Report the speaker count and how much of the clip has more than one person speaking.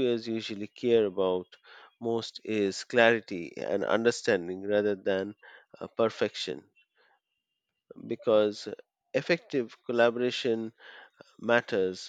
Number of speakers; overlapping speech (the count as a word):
one, no overlap